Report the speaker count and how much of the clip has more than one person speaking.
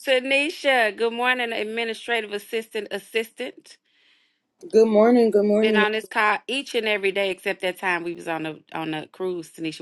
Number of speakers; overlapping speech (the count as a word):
two, about 2%